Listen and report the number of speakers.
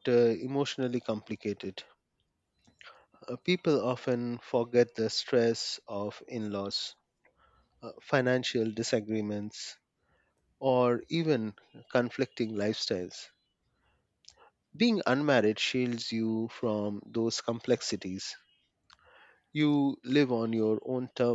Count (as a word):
one